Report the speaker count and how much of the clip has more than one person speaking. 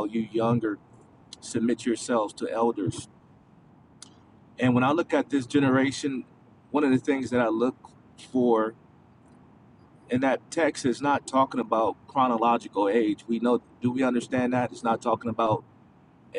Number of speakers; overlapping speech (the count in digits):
1, no overlap